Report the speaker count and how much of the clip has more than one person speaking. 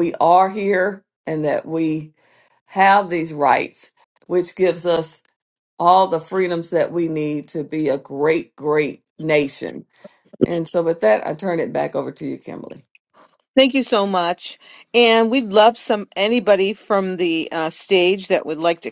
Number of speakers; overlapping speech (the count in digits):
2, no overlap